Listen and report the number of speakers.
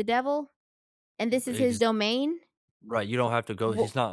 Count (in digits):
2